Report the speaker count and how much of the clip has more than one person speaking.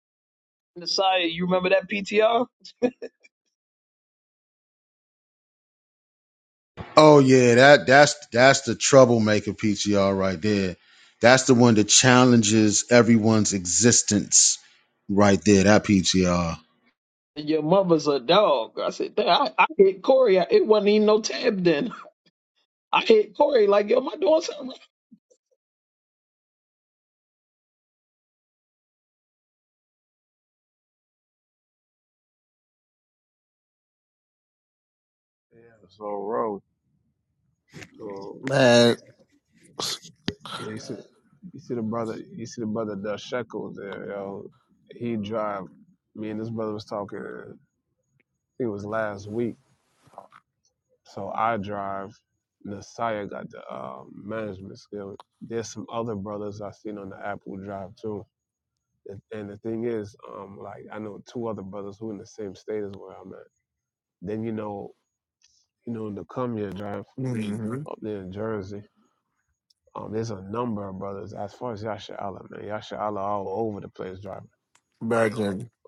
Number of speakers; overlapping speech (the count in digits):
4, under 1%